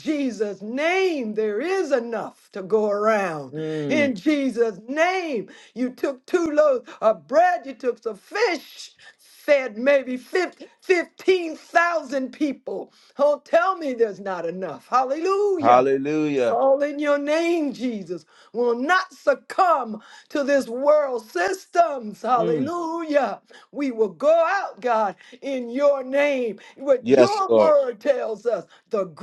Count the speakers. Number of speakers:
two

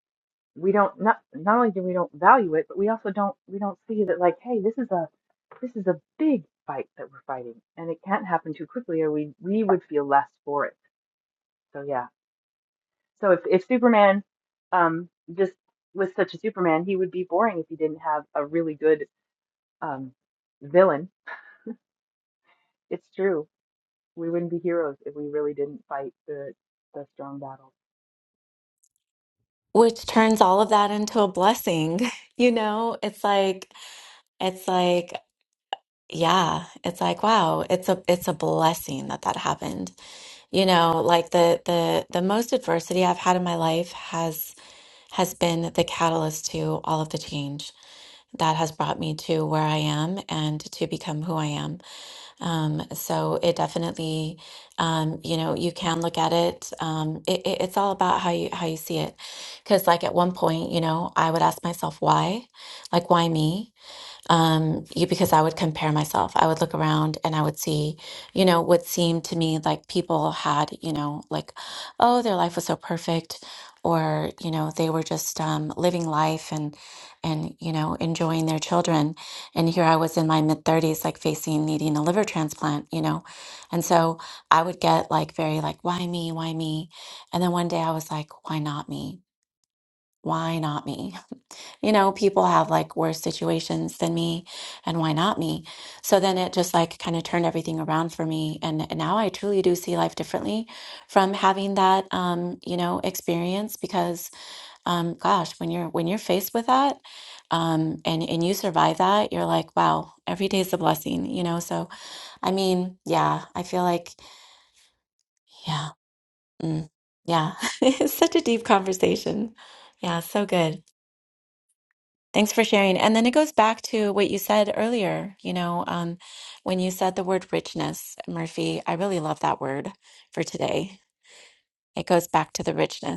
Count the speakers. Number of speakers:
two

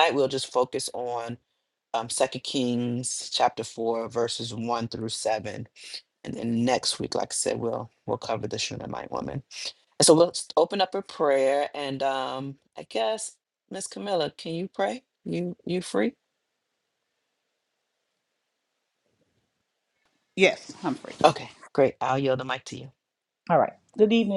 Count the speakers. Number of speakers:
two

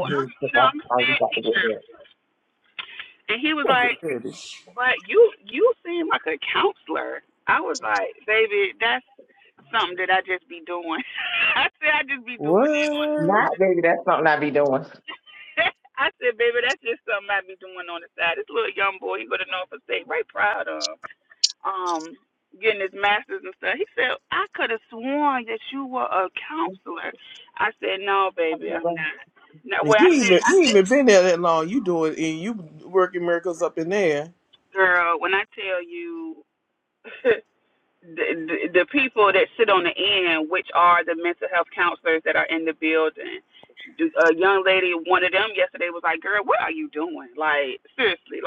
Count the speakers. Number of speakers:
three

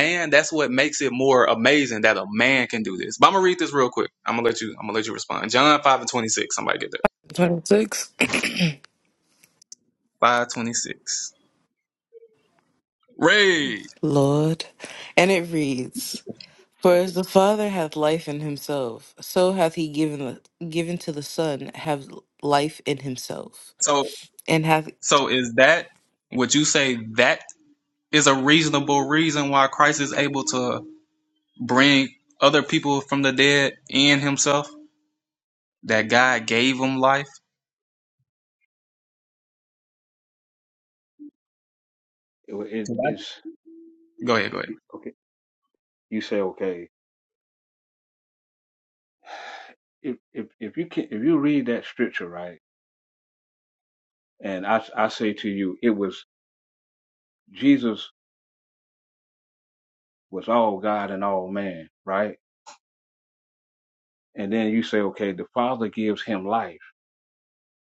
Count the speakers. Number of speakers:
three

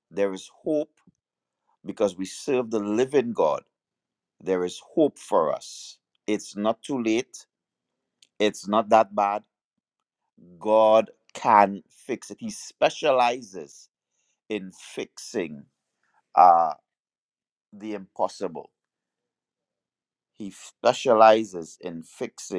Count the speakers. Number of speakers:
one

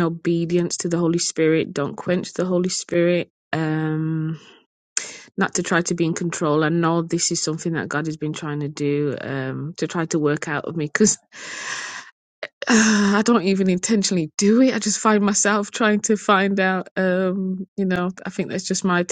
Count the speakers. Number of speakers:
one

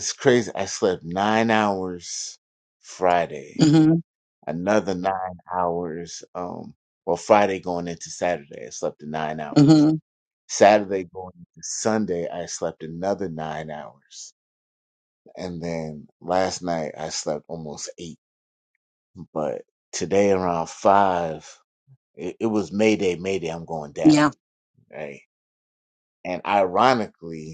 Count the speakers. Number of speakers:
two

